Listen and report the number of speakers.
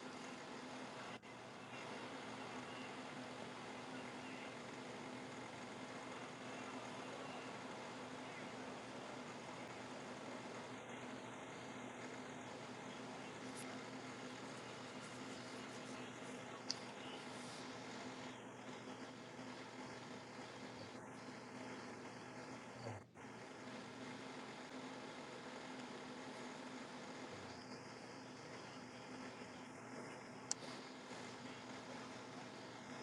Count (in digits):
0